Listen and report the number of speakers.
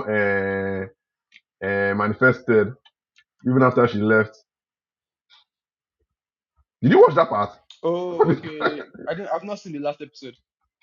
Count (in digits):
2